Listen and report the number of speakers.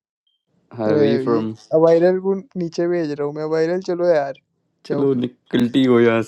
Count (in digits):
2